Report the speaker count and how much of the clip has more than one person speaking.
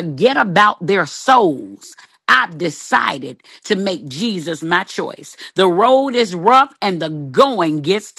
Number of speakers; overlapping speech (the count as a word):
one, no overlap